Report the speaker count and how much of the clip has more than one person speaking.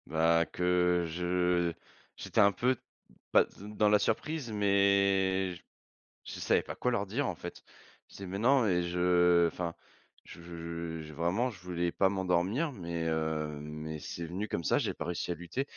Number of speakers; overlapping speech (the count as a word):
one, no overlap